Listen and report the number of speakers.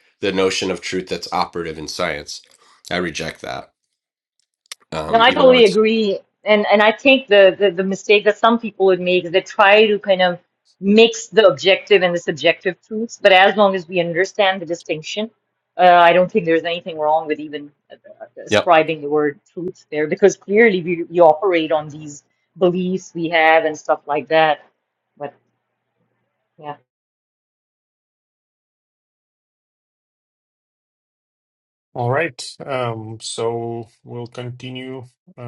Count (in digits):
3